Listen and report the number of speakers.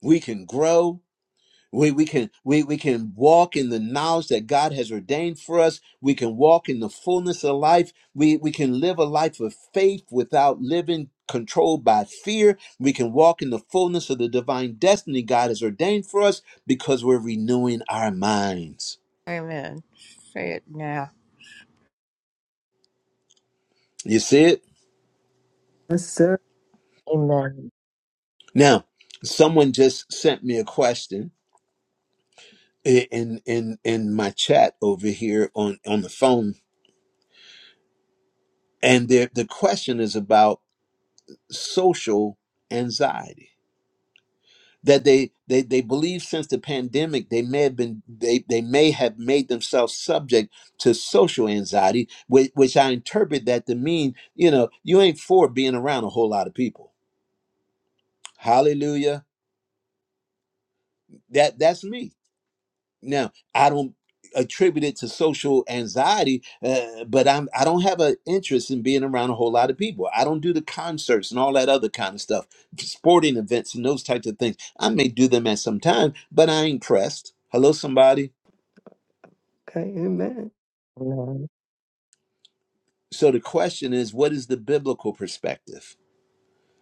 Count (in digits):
4